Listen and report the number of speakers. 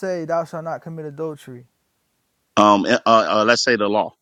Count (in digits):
2